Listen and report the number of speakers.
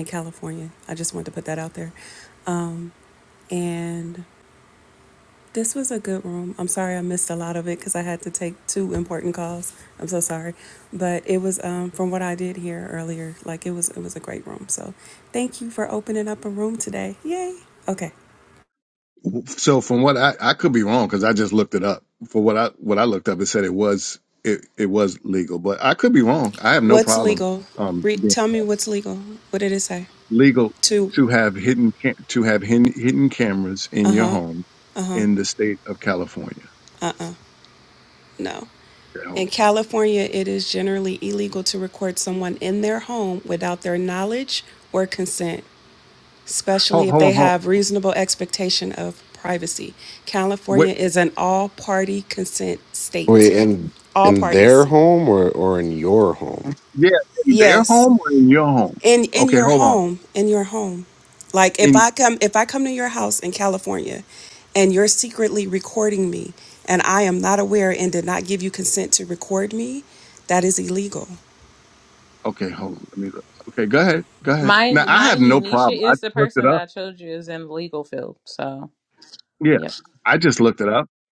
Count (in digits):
4